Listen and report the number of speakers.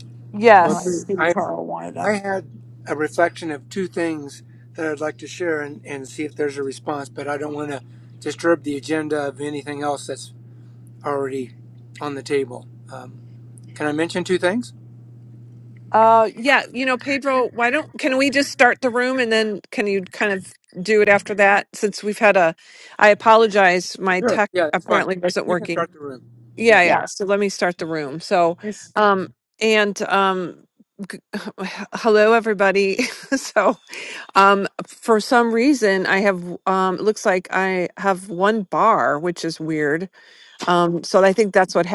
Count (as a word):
three